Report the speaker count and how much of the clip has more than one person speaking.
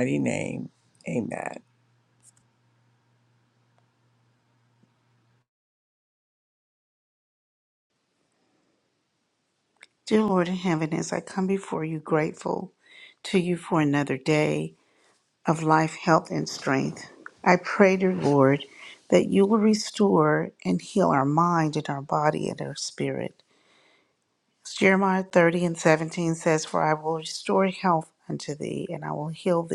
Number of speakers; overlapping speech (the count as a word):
two, no overlap